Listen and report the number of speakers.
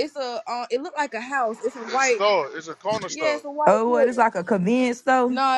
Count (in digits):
3